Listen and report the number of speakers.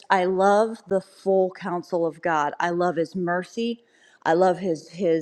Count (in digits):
1